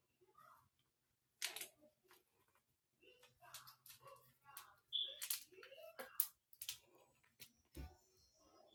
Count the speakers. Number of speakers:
0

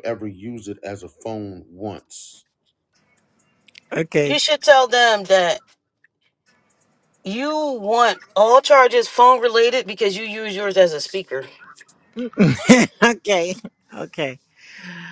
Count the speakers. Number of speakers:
3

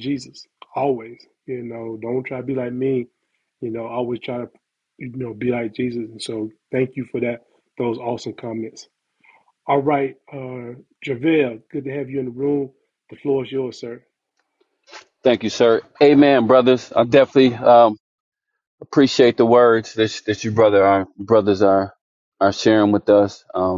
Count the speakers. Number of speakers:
2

